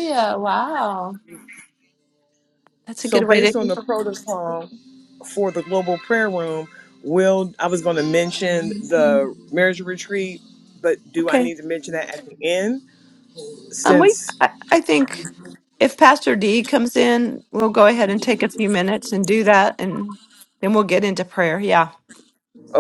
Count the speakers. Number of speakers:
2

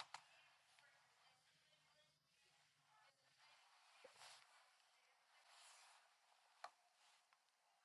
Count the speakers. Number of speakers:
0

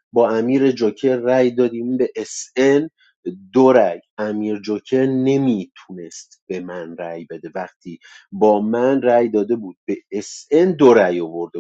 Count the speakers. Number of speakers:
1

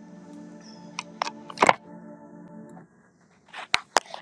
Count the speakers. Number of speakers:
0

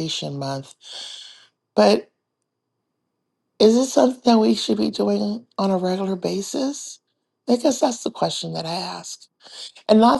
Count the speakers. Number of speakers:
1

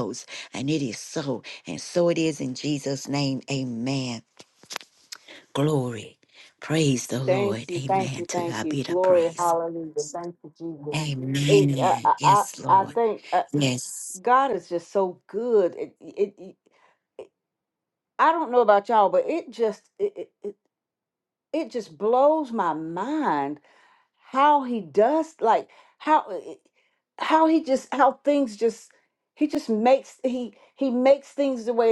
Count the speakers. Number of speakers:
2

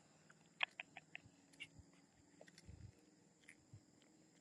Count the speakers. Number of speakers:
0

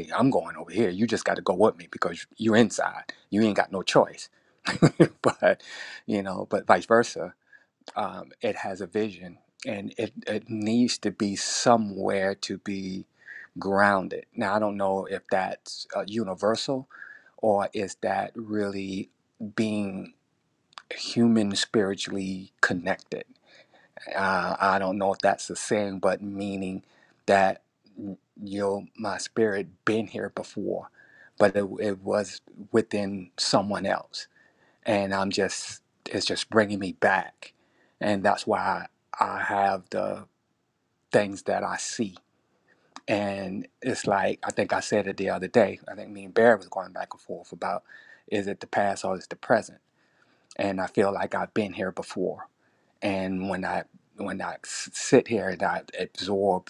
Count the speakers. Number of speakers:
1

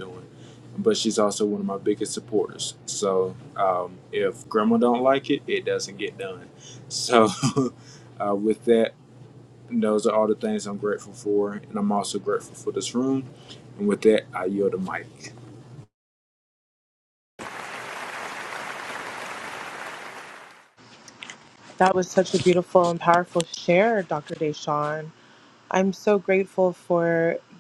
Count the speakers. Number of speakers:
2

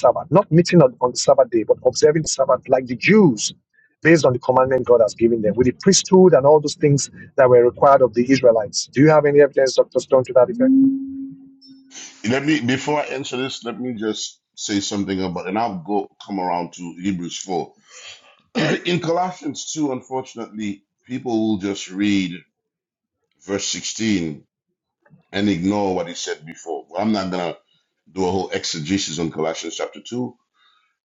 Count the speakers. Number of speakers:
2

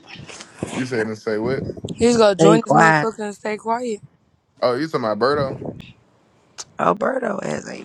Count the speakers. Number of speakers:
3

